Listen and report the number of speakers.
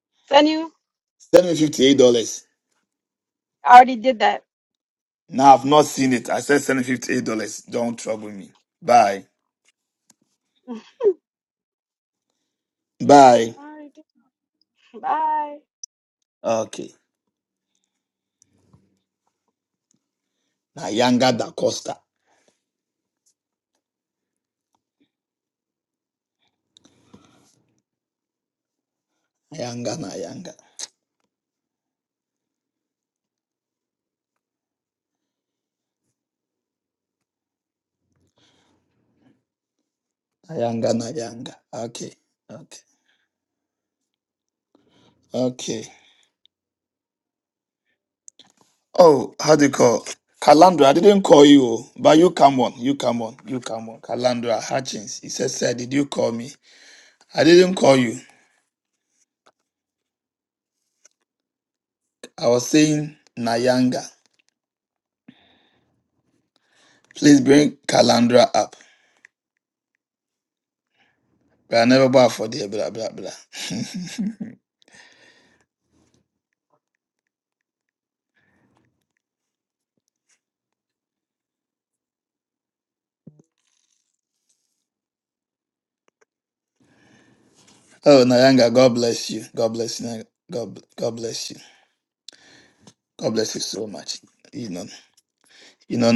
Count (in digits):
2